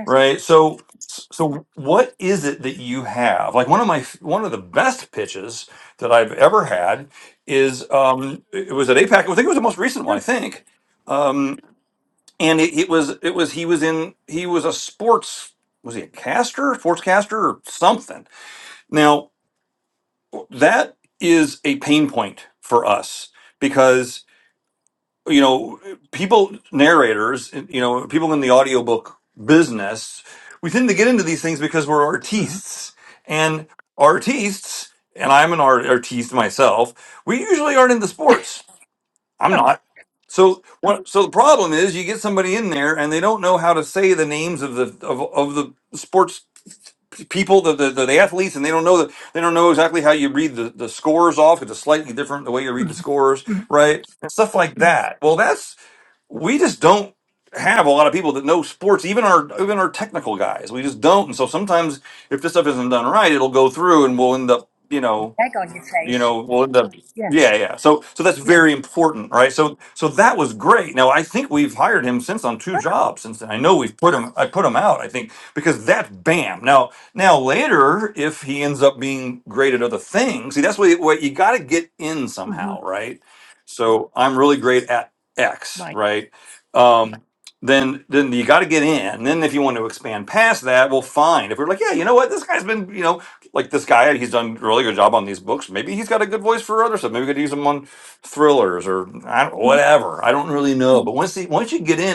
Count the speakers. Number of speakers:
2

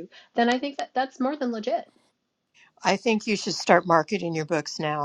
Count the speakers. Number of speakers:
2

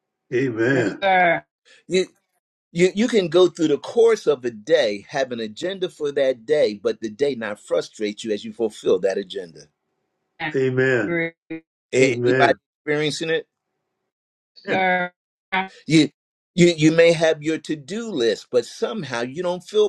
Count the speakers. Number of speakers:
3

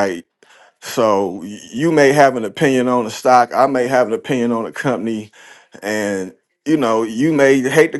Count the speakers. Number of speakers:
1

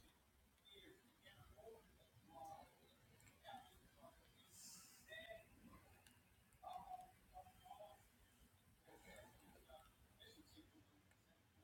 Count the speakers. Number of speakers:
0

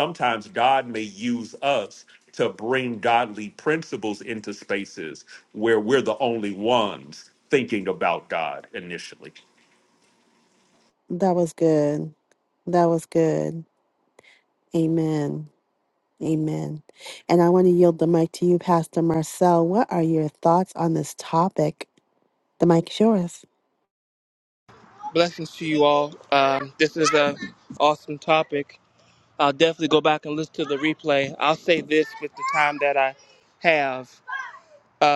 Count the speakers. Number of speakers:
3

